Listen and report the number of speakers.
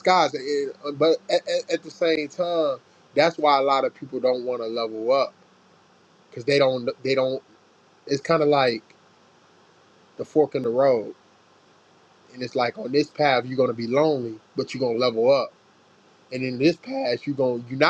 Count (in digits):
1